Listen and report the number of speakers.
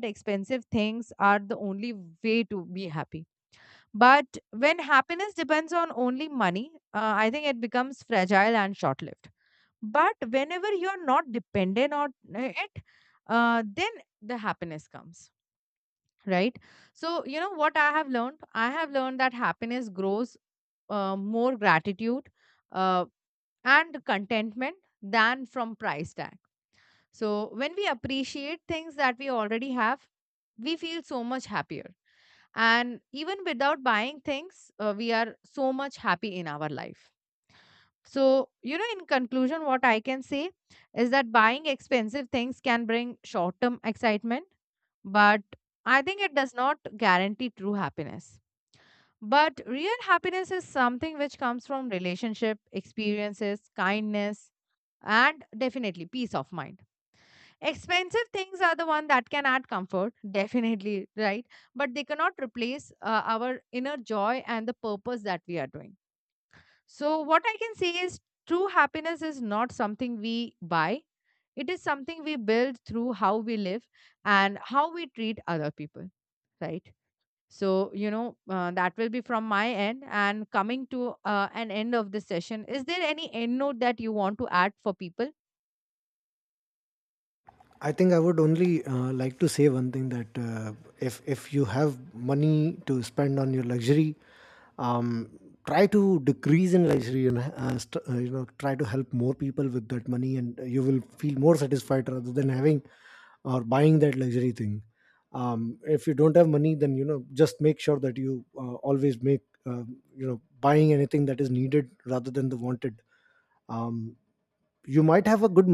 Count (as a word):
two